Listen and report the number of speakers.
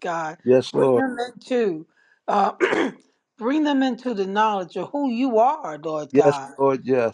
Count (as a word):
two